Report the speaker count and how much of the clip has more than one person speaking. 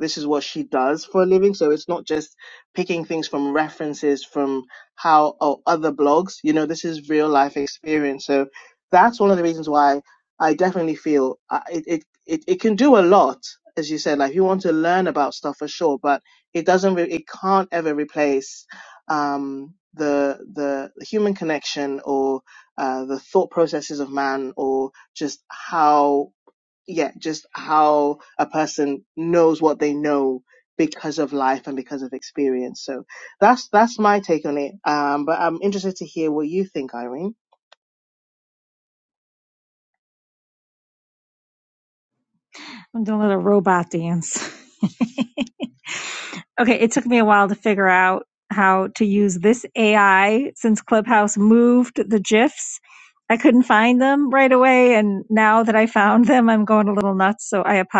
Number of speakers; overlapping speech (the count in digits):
2, no overlap